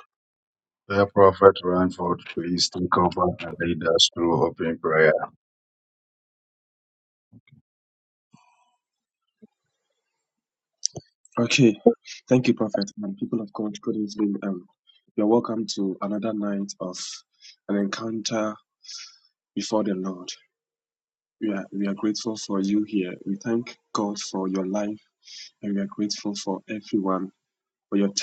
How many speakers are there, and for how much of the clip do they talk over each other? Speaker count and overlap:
two, no overlap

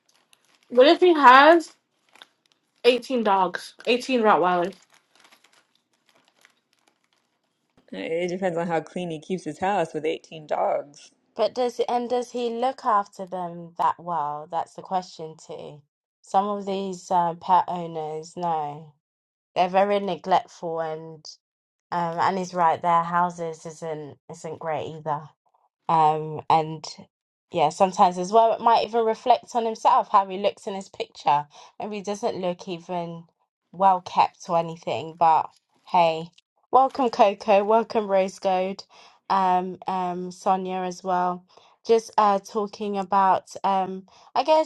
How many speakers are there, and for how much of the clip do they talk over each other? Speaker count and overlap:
three, no overlap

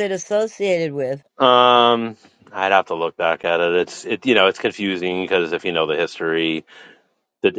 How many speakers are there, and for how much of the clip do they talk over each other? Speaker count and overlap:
two, no overlap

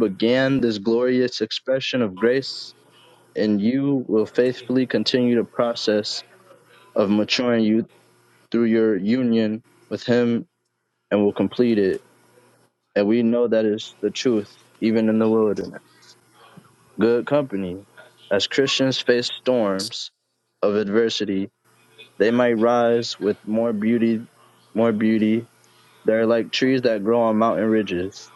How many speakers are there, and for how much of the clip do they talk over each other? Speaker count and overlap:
one, no overlap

